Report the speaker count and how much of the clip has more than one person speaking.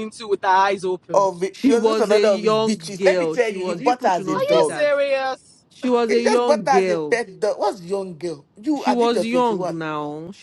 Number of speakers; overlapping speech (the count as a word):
three, about 53%